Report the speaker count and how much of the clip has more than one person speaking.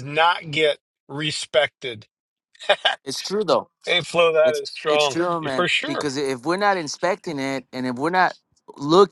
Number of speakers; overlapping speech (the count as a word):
two, about 14%